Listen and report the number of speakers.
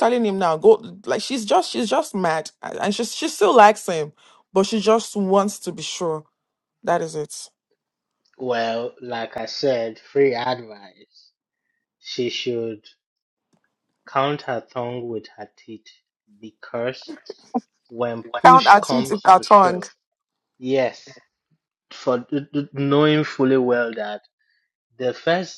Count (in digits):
2